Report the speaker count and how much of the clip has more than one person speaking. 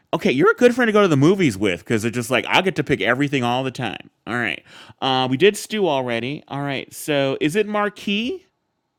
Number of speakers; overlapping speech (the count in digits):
1, no overlap